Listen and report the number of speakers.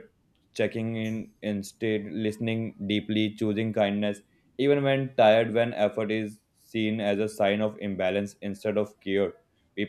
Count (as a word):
one